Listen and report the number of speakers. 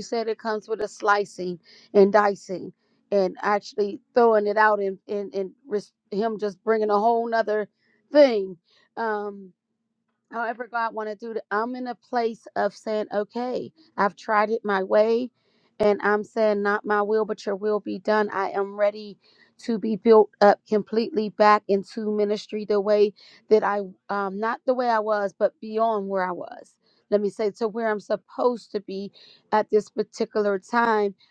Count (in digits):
1